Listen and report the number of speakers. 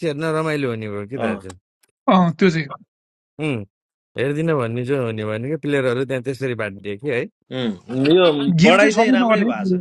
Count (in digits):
3